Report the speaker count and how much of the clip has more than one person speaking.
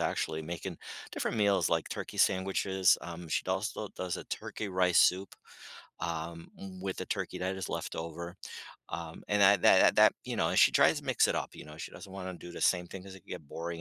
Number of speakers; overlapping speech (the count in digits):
1, no overlap